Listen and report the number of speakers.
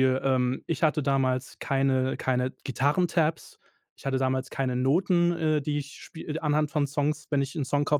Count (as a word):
one